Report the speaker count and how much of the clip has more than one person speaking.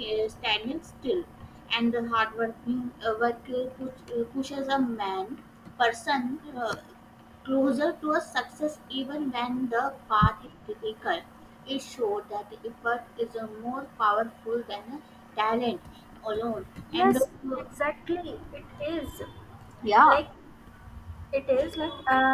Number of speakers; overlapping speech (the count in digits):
2, about 2%